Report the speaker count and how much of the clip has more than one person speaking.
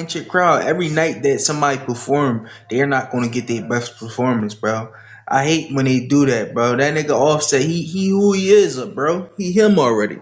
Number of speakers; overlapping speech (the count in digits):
1, no overlap